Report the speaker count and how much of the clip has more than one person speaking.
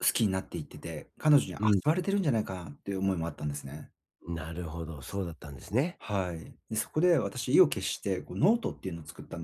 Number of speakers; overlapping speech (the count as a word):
two, about 2%